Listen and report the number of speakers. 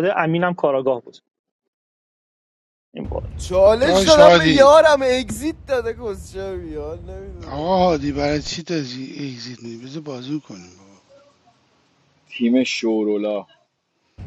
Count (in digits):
4